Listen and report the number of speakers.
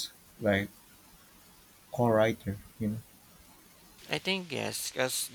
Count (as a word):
two